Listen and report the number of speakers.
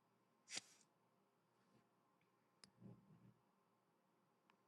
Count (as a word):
zero